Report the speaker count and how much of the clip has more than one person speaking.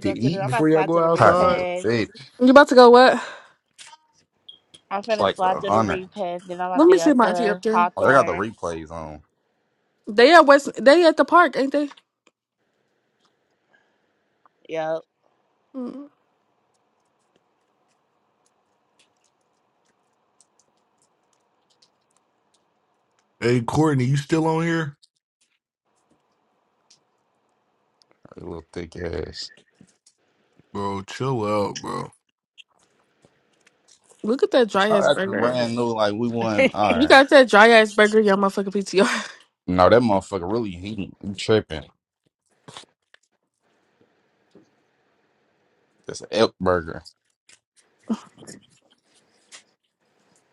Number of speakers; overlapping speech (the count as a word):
four, about 10%